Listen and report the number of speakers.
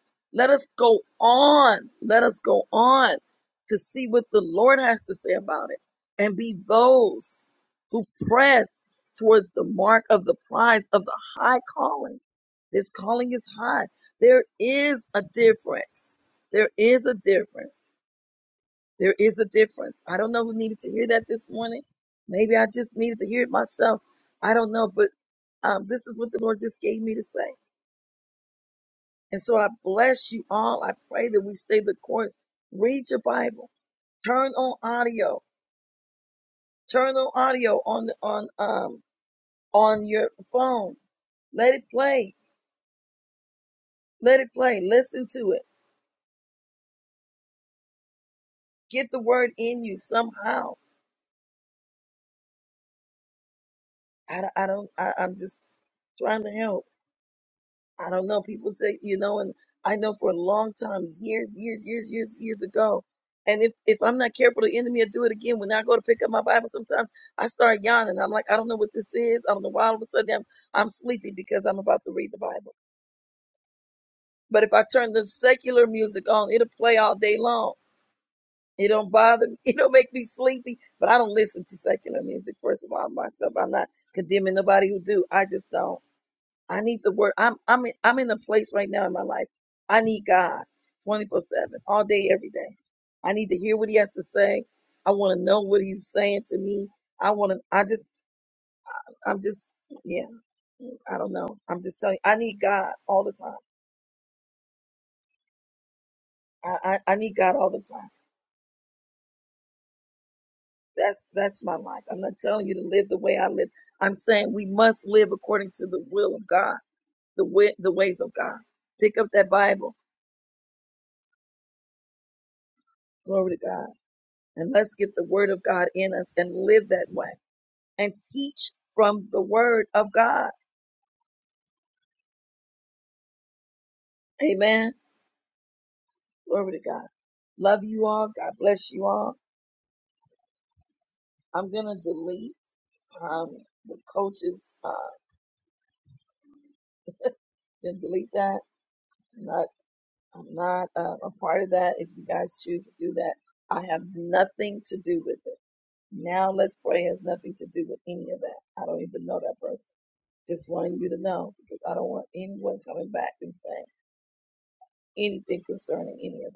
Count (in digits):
1